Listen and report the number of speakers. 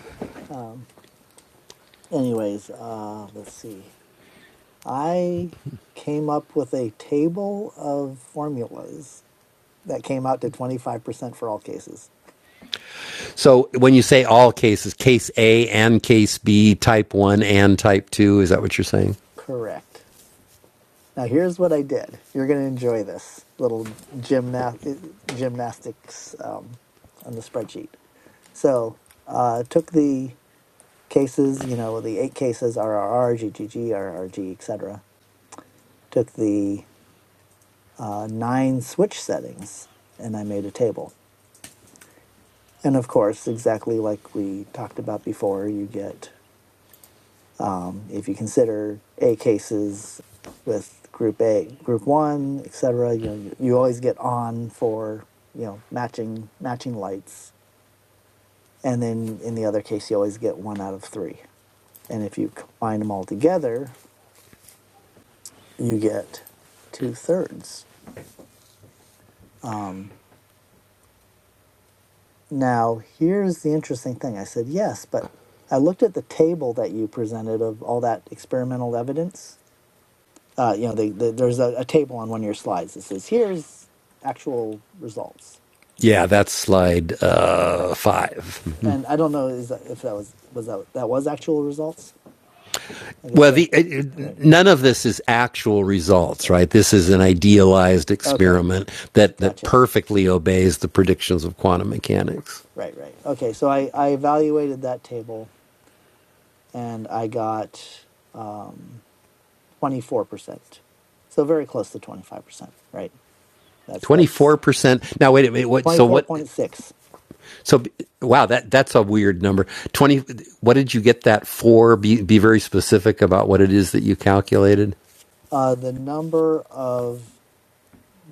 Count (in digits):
2